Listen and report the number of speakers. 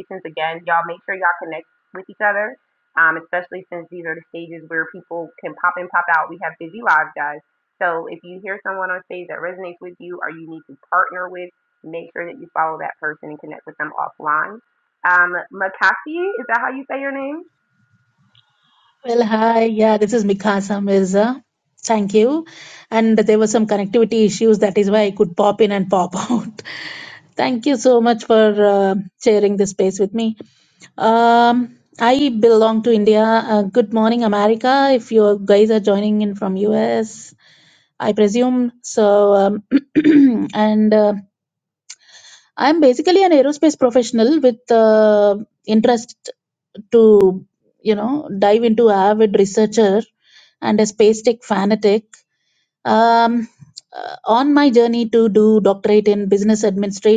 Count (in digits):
2